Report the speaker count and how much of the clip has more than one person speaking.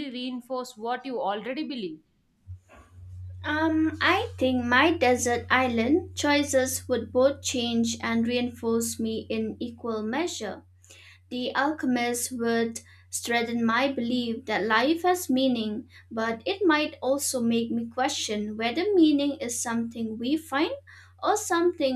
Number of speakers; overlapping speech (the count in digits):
2, no overlap